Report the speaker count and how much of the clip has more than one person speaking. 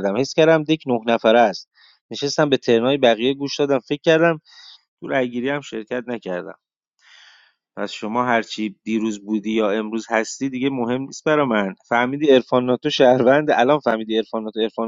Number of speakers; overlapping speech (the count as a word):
one, no overlap